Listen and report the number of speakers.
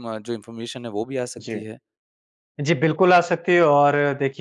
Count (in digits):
2